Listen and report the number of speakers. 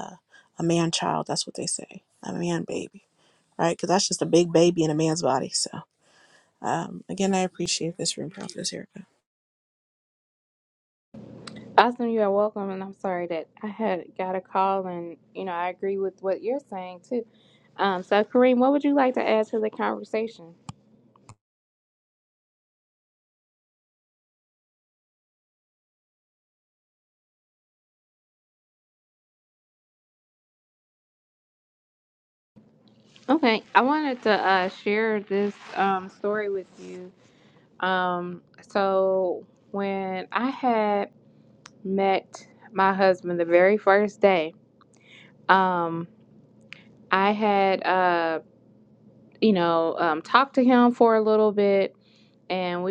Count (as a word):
two